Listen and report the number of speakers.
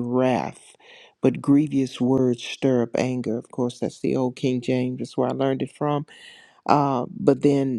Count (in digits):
1